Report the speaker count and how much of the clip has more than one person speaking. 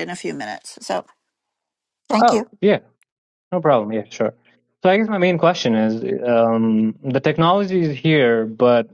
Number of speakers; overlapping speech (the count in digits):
2, about 3%